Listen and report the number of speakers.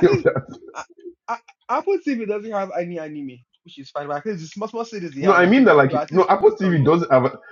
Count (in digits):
2